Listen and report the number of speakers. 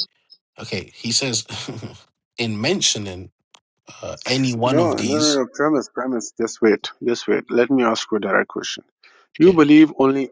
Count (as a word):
two